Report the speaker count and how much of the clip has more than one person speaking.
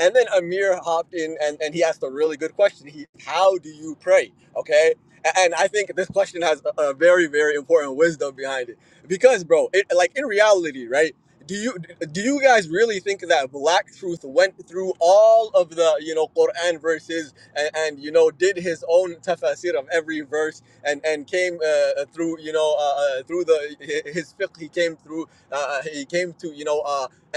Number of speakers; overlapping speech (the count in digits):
1, no overlap